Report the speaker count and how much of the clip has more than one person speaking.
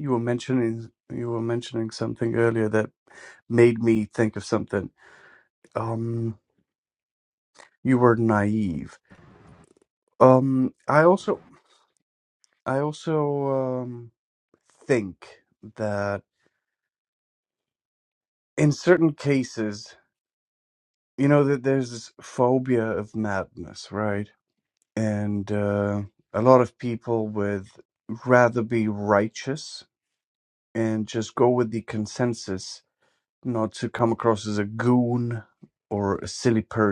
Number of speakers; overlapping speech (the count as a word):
one, no overlap